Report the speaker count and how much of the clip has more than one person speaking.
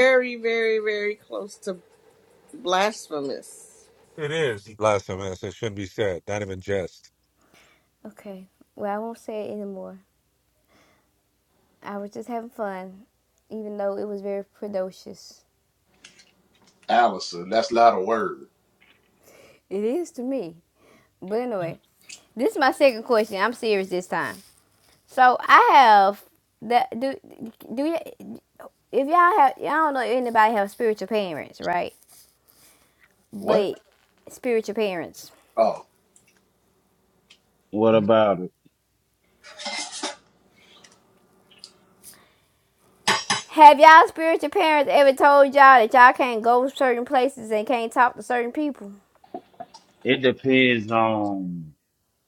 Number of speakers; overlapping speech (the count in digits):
5, under 1%